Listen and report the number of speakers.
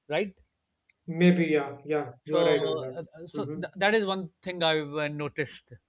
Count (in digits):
2